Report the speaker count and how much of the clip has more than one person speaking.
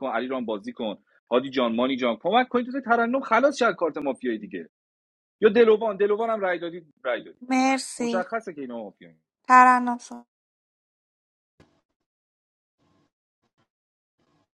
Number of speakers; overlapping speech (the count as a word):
two, about 2%